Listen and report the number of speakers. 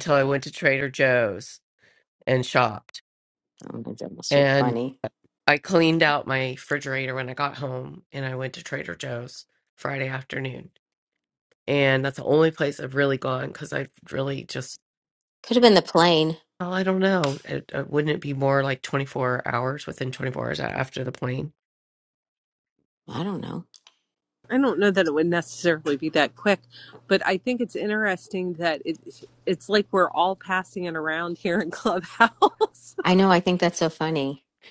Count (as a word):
three